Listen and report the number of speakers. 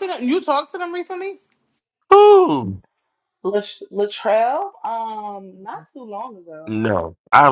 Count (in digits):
3